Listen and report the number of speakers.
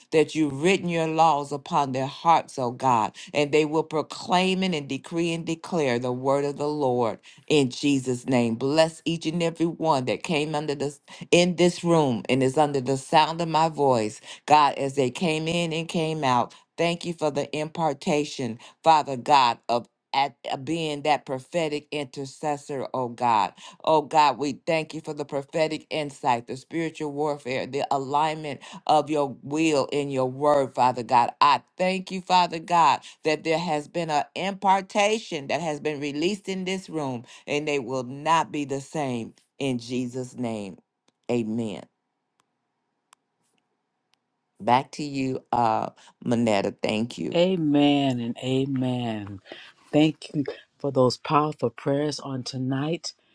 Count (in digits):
2